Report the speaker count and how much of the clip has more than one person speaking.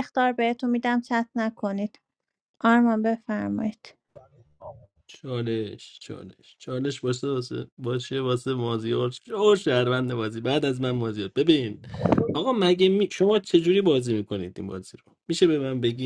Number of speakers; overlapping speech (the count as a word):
two, no overlap